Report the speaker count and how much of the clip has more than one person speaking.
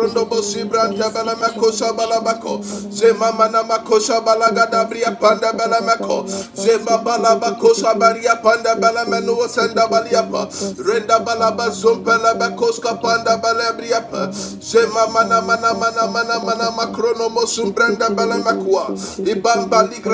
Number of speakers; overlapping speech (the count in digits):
2, about 69%